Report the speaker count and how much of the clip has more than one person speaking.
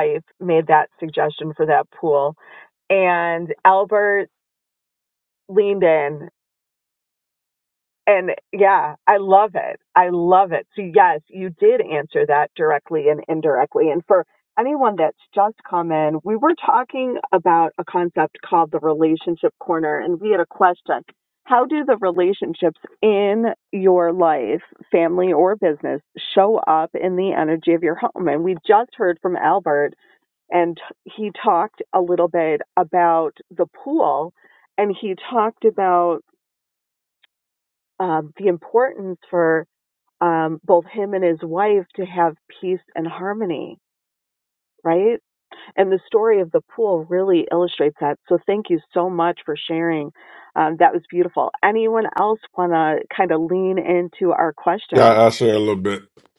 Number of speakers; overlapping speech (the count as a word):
two, under 1%